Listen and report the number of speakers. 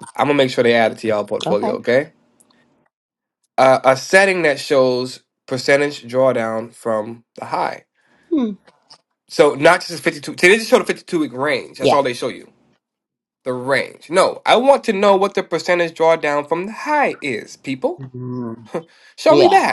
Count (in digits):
2